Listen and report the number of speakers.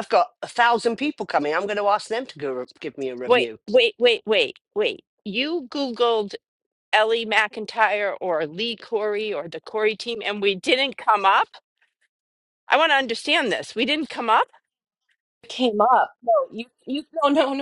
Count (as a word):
three